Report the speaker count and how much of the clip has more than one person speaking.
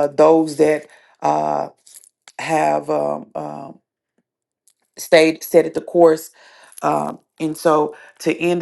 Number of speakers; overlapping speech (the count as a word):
one, no overlap